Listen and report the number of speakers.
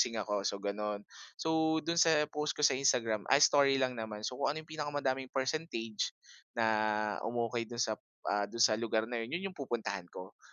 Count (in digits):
1